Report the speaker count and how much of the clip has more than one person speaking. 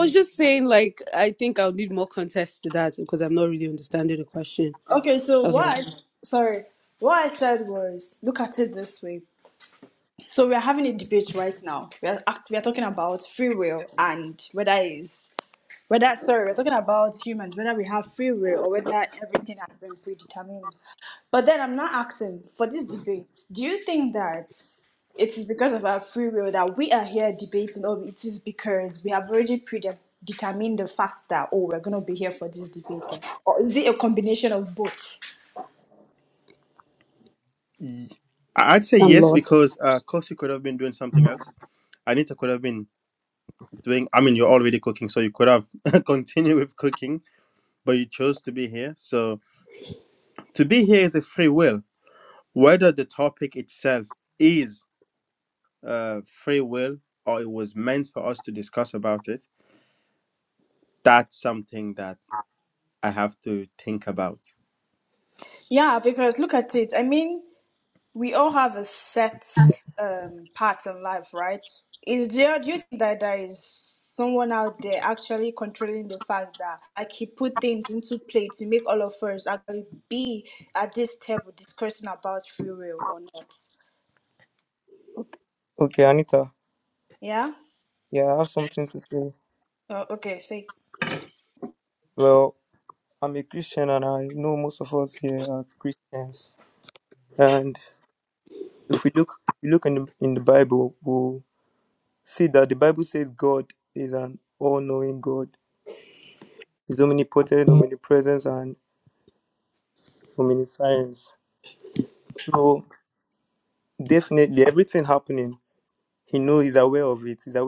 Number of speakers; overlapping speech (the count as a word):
four, about 1%